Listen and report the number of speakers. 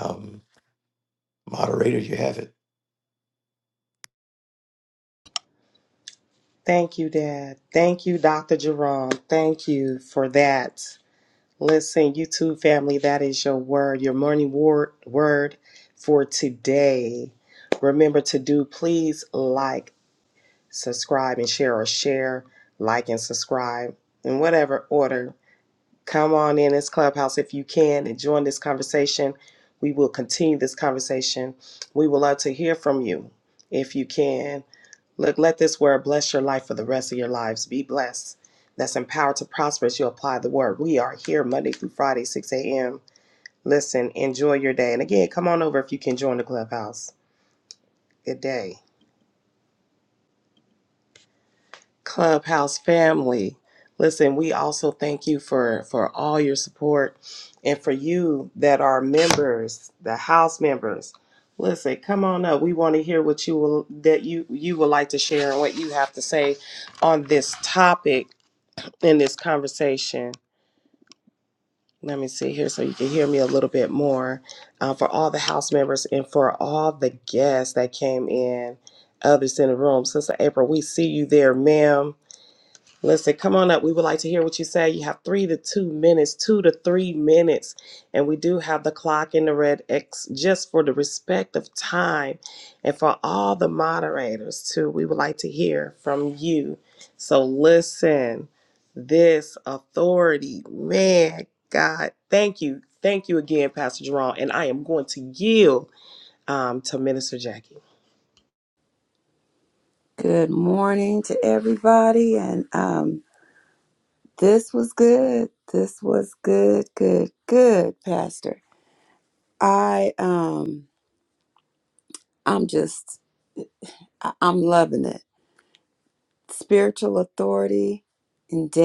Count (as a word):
three